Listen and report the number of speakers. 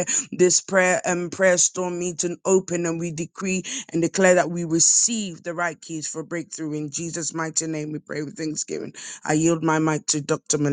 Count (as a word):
one